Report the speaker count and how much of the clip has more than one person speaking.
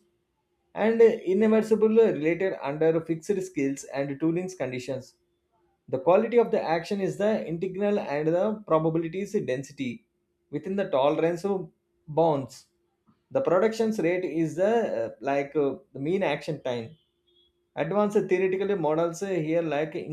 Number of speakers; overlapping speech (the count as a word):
one, no overlap